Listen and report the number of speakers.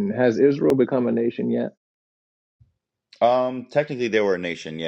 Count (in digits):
2